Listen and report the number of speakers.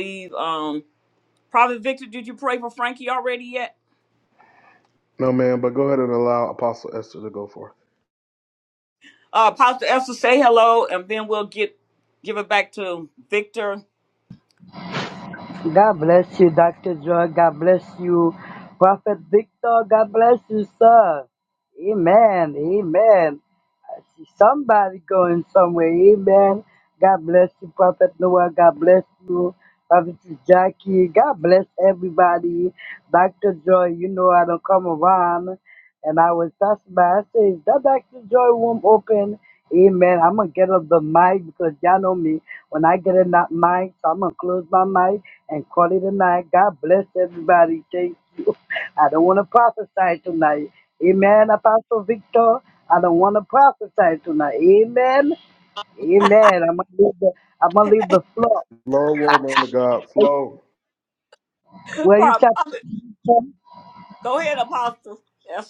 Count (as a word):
three